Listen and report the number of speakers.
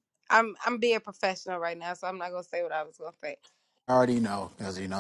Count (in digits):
2